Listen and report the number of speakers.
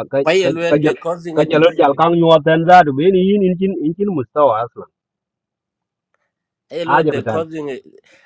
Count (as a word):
two